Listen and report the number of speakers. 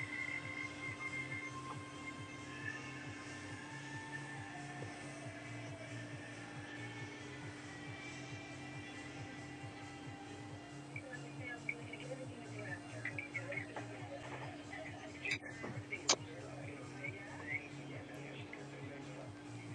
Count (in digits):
0